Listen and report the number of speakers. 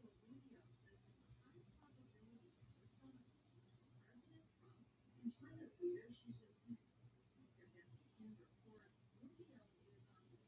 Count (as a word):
zero